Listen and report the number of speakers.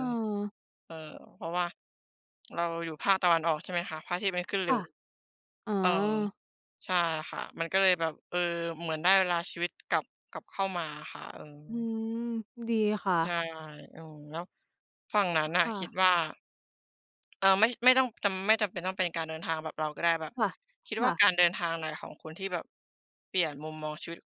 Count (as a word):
two